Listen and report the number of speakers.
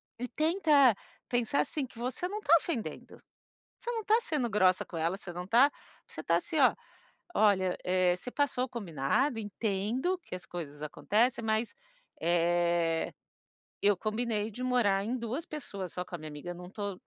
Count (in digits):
1